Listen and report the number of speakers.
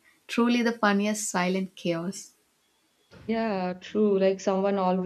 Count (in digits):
2